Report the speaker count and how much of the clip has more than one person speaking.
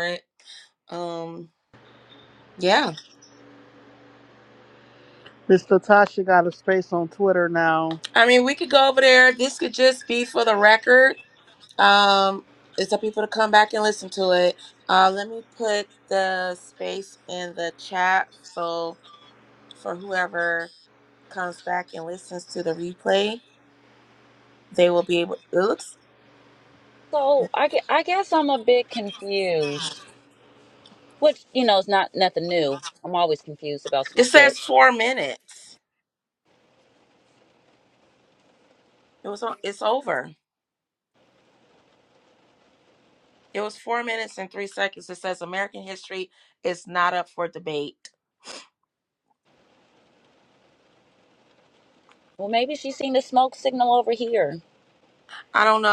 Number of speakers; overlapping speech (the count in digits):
3, about 1%